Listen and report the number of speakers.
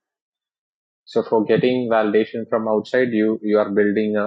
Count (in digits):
1